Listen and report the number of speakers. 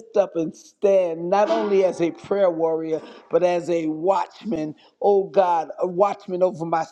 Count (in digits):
1